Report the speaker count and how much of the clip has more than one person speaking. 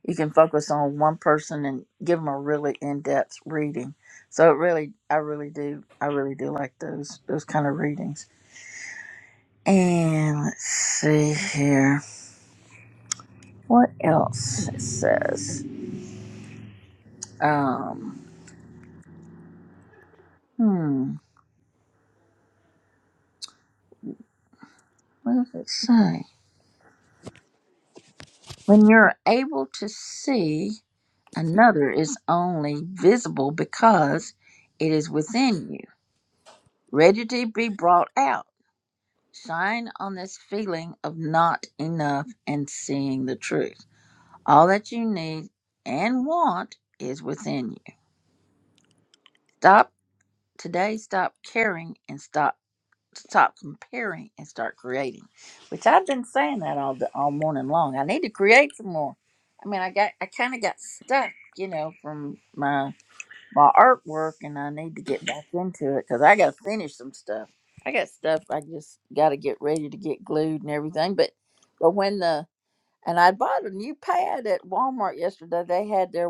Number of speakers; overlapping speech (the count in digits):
1, no overlap